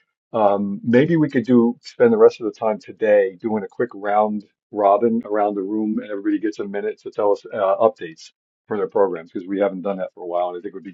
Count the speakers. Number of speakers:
1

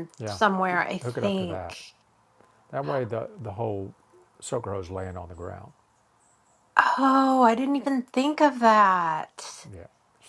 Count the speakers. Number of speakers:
2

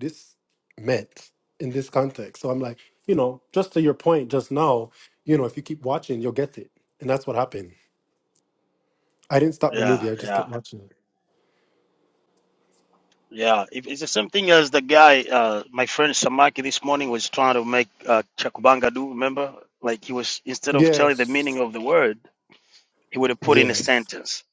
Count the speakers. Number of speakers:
2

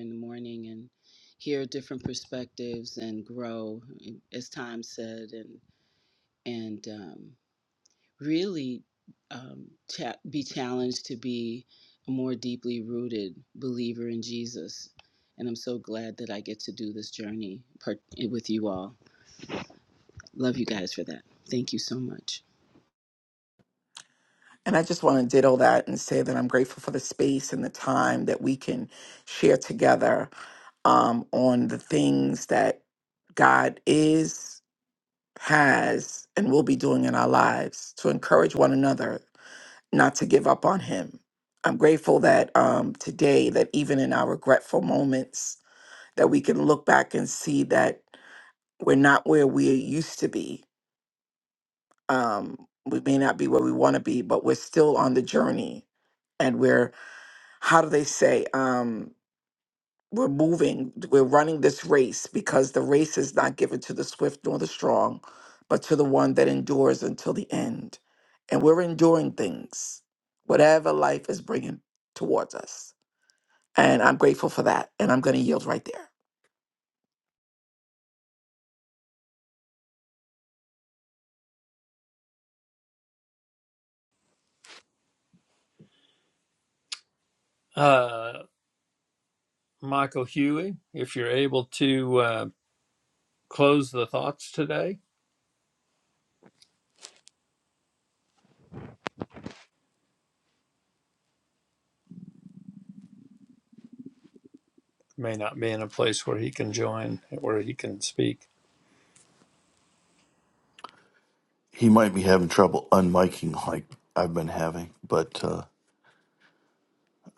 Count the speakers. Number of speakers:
4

